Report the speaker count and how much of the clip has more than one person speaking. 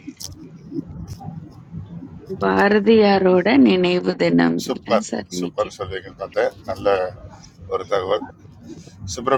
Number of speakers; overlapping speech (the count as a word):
two, about 8%